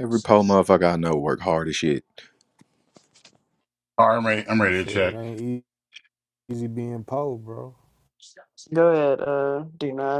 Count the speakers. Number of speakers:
four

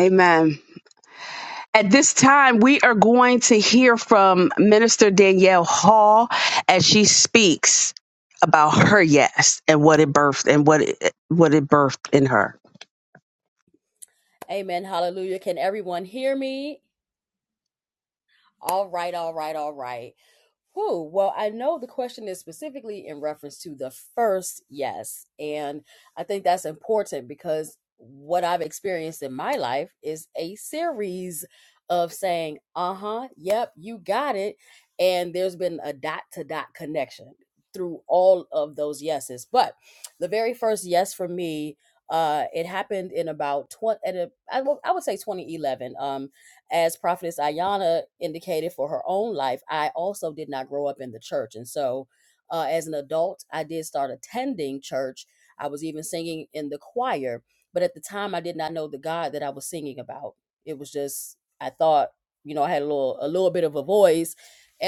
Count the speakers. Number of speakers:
two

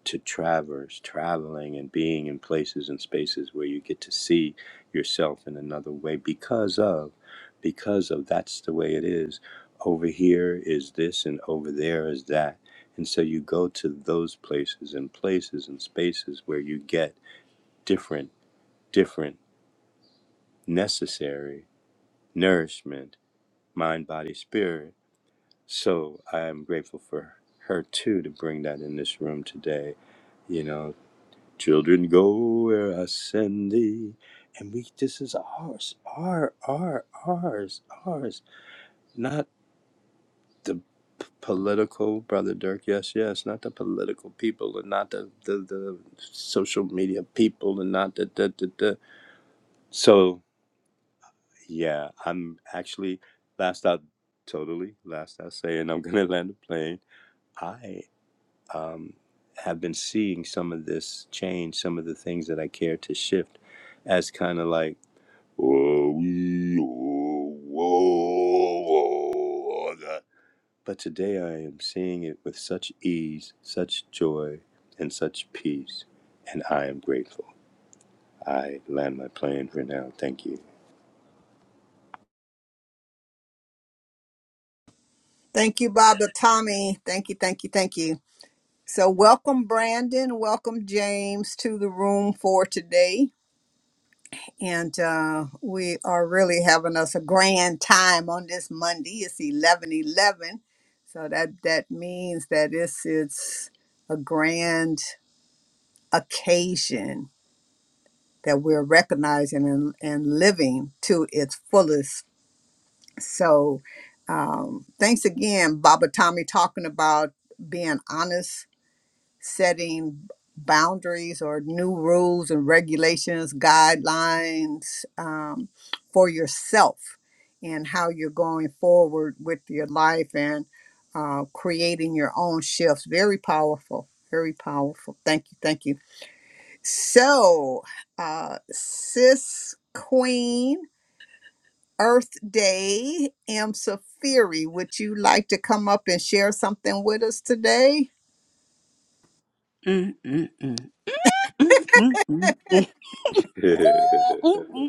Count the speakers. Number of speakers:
three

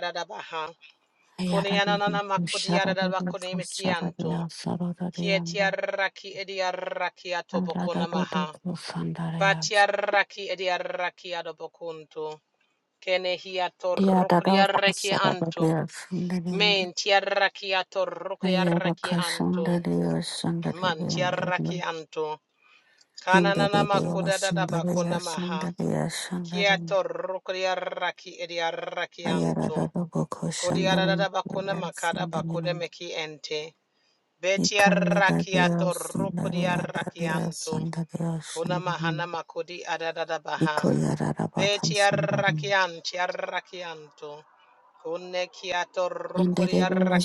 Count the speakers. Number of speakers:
two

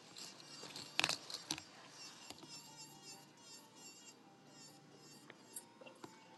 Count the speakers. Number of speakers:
zero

